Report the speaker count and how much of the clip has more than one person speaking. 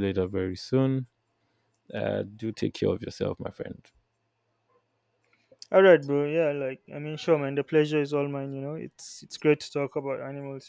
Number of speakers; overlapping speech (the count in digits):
2, no overlap